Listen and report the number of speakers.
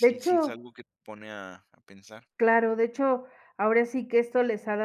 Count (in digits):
2